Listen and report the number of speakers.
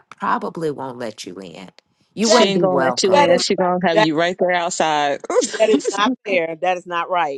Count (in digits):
3